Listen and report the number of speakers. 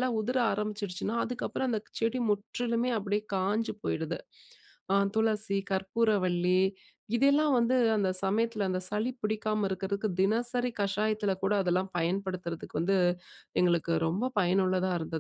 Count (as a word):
one